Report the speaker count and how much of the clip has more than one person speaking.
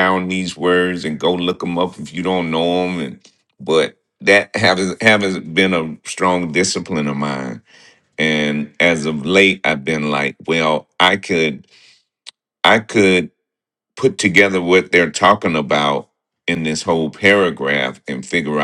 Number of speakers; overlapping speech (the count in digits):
1, no overlap